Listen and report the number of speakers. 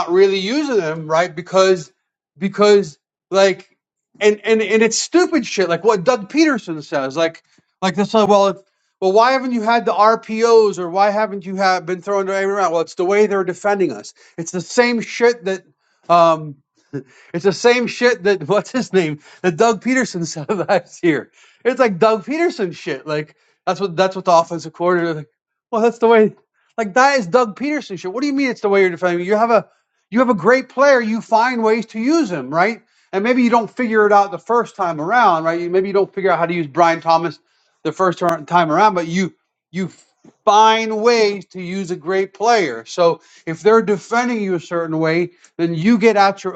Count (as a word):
one